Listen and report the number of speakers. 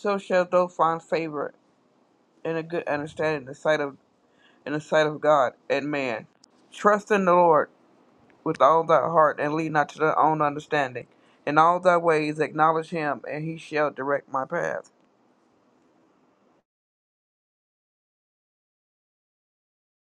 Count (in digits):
1